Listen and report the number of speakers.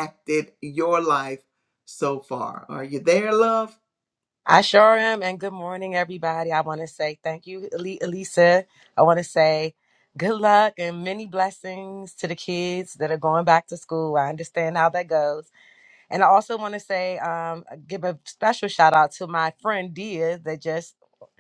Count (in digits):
2